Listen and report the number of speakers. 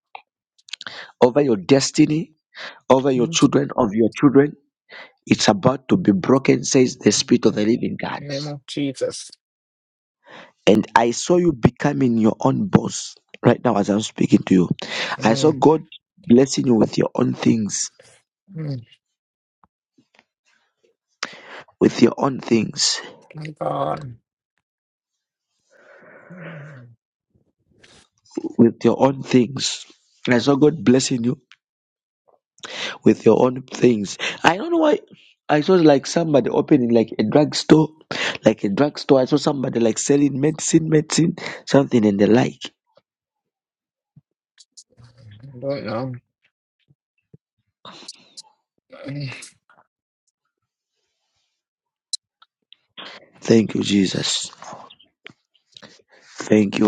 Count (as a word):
two